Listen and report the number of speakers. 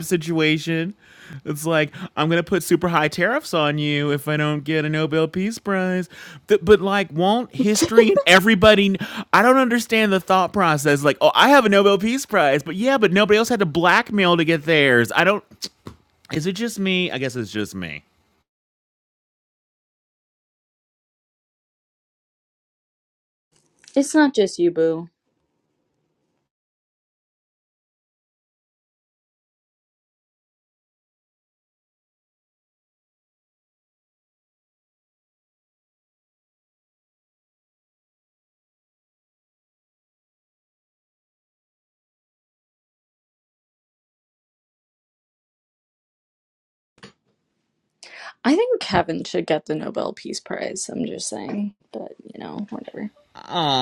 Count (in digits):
2